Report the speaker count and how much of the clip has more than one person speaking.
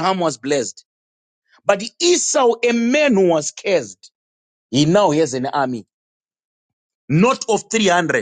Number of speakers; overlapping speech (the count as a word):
one, no overlap